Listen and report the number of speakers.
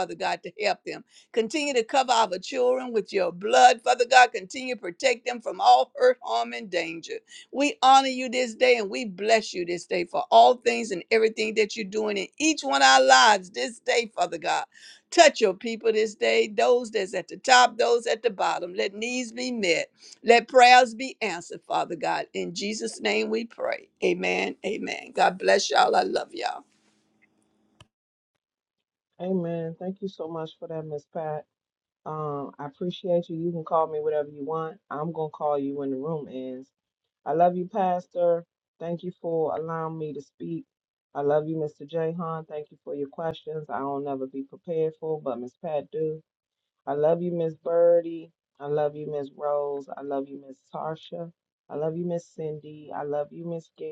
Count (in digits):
2